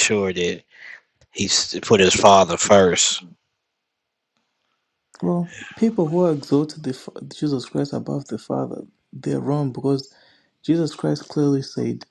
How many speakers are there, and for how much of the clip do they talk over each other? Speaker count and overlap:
2, no overlap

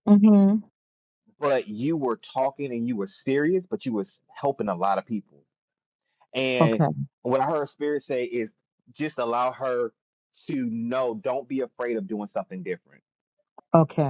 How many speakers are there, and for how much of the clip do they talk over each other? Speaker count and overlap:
2, about 1%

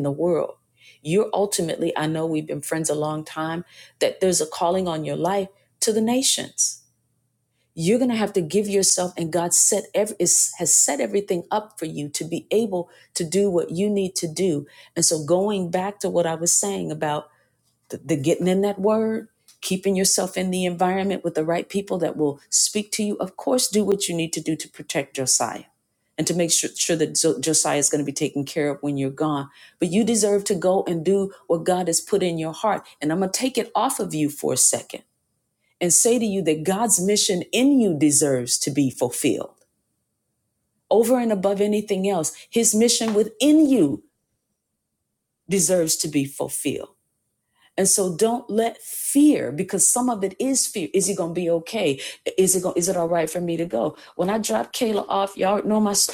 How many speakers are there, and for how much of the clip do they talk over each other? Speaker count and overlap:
1, no overlap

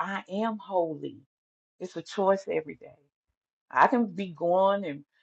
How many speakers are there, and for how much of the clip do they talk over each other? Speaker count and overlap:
1, no overlap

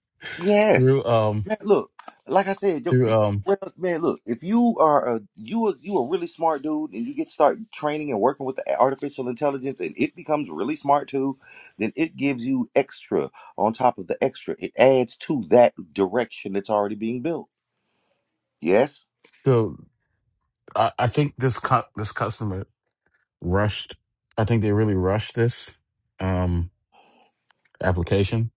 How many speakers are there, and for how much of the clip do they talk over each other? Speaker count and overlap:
2, about 1%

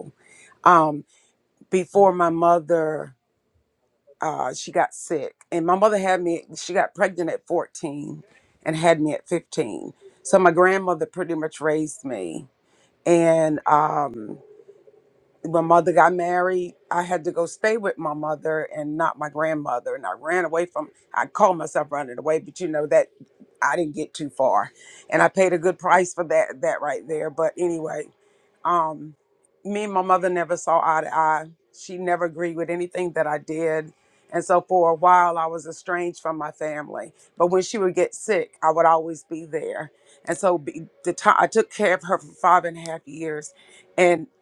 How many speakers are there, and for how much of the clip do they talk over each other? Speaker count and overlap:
1, no overlap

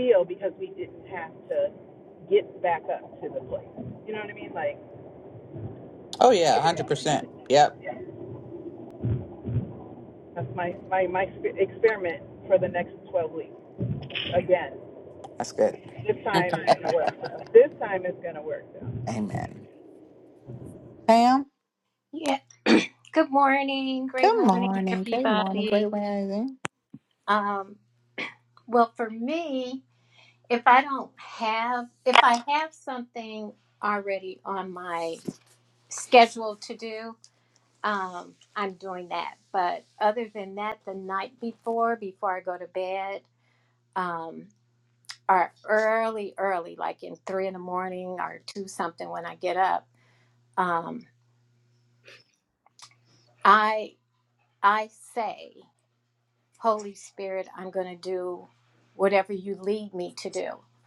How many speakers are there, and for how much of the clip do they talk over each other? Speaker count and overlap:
3, about 3%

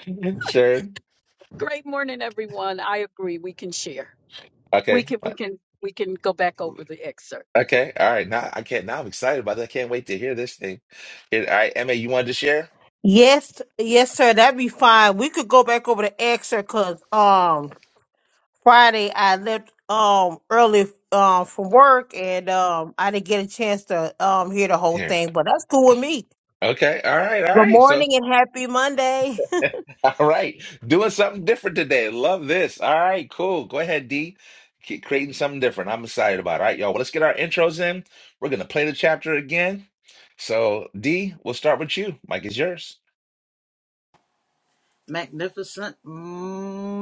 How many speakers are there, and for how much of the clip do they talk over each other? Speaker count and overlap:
4, about 2%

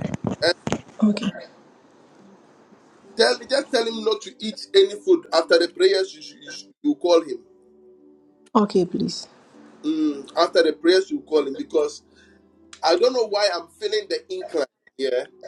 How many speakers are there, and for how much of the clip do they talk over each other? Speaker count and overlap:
2, no overlap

